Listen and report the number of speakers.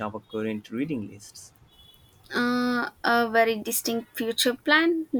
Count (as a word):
two